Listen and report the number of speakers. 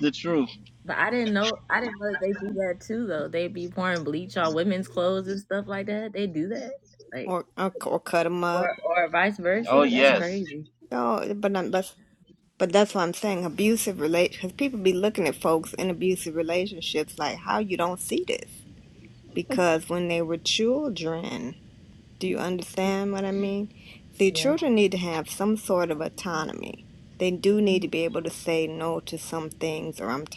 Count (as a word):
three